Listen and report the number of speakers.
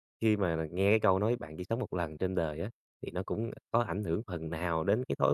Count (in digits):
1